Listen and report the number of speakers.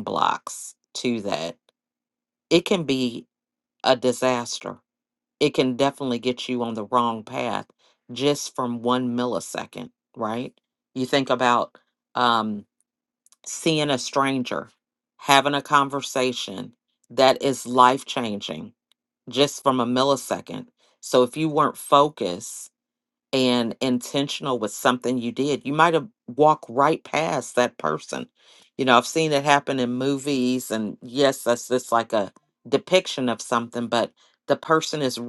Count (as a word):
one